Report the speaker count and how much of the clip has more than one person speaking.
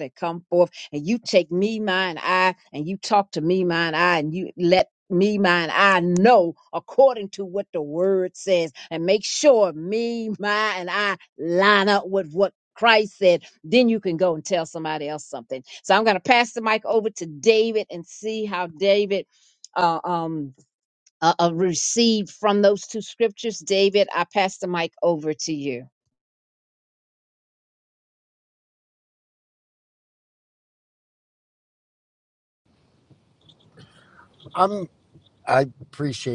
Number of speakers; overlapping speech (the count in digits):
2, no overlap